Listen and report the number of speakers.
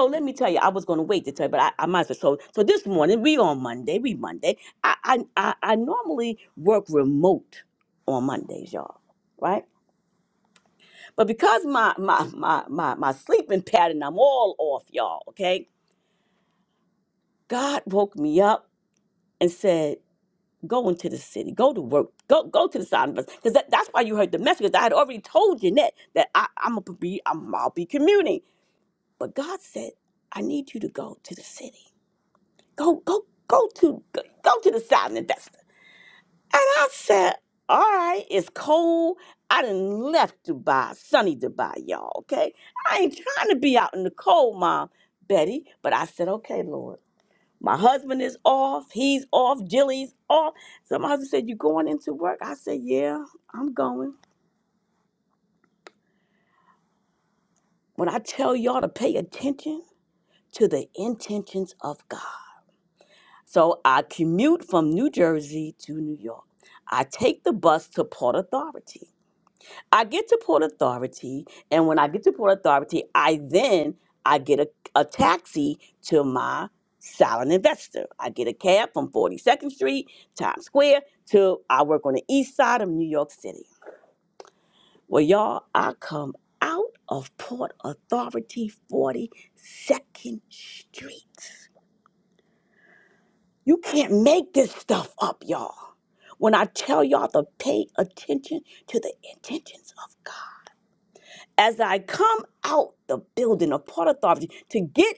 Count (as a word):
one